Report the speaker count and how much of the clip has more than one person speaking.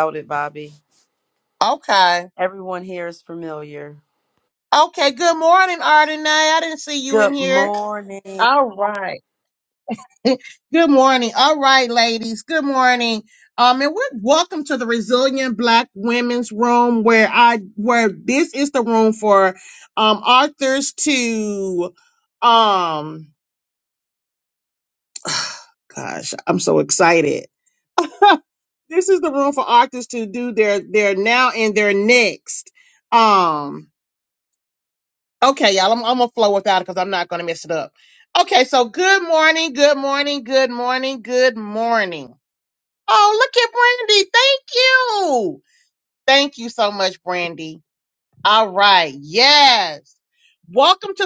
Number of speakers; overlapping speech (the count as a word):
two, about 1%